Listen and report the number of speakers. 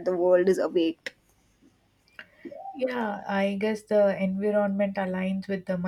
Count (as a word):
two